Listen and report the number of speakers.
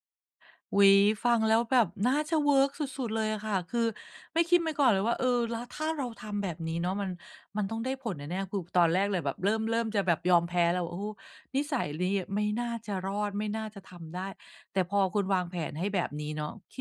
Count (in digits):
1